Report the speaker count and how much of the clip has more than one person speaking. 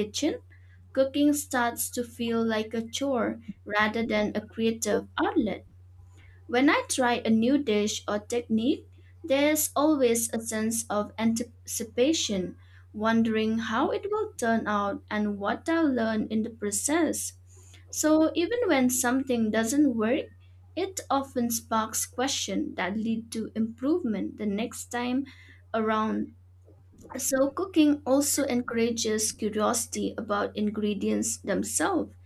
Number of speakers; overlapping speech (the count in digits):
1, no overlap